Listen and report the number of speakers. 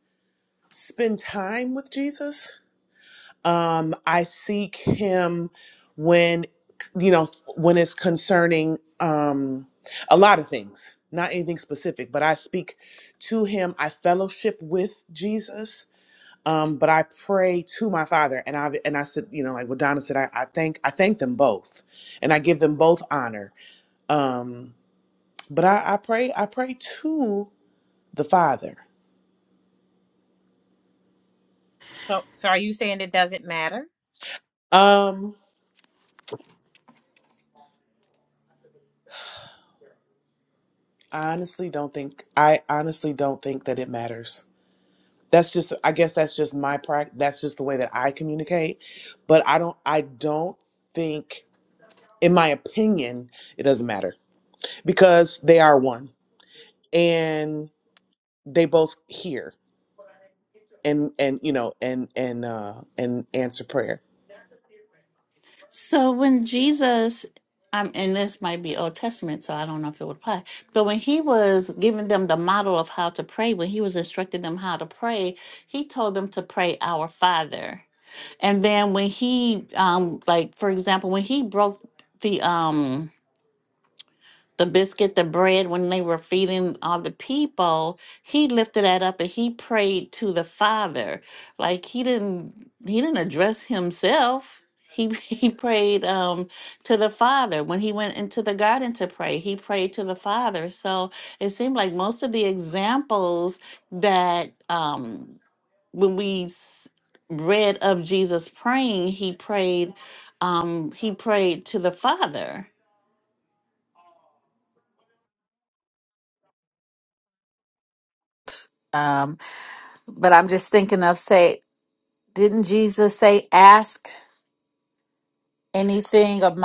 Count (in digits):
4